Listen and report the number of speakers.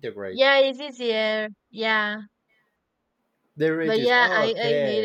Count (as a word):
two